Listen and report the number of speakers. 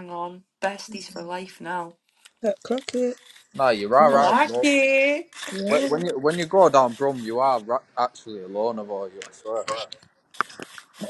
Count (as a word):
three